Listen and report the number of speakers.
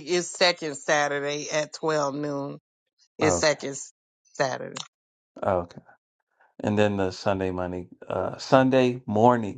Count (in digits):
2